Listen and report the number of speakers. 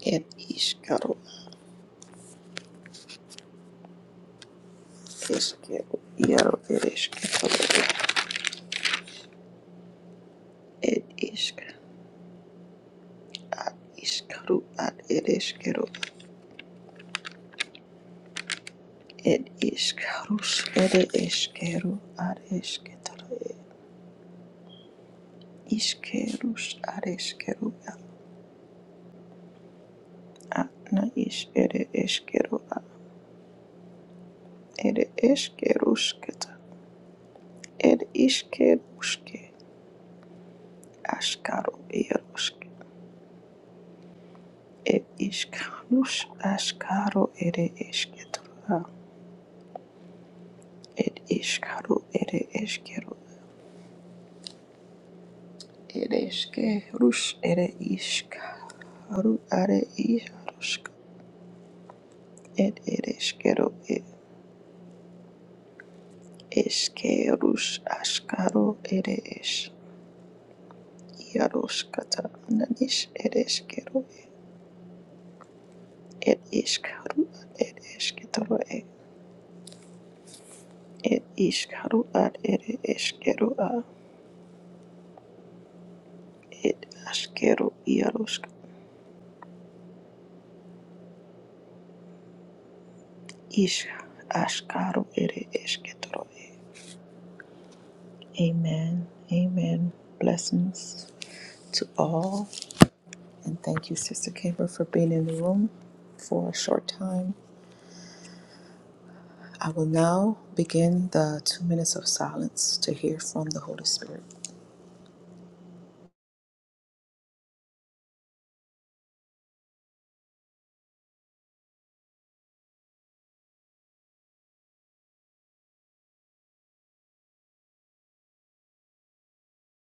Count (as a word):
one